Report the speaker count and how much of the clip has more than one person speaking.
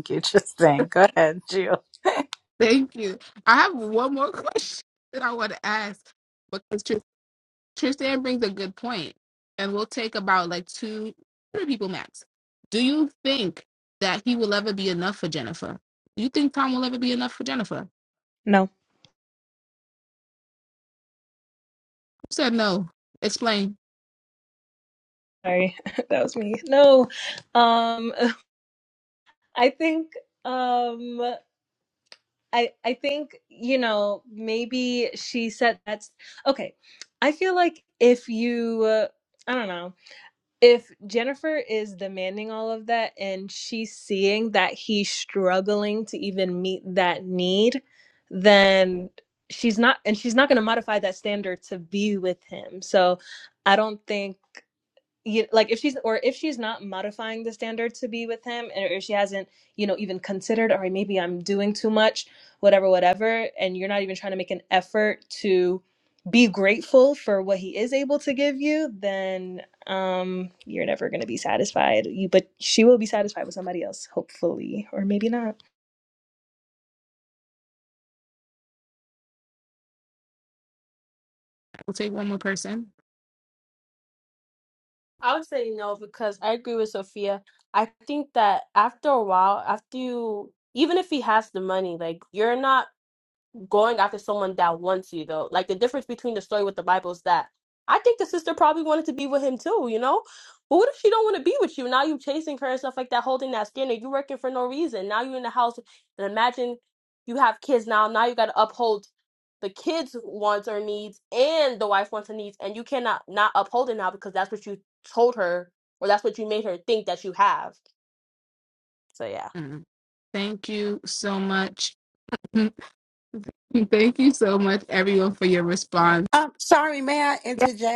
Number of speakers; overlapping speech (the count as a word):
five, under 1%